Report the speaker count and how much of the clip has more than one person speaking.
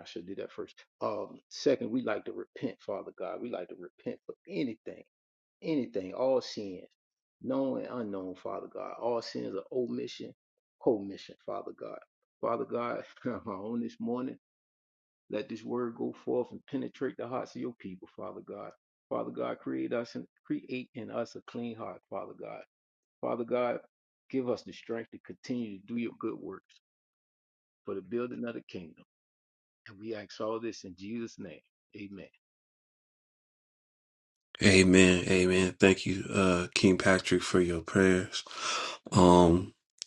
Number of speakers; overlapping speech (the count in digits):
2, no overlap